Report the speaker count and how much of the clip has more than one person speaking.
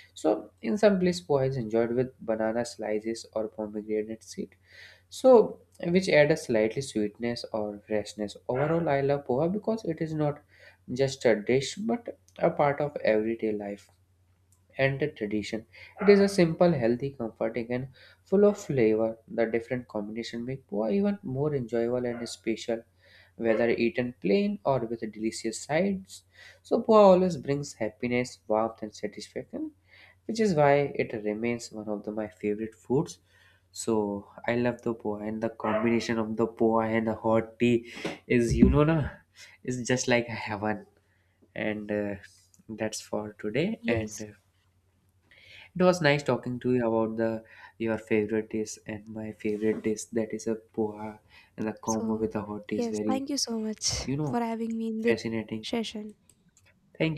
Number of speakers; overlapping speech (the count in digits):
2, about 2%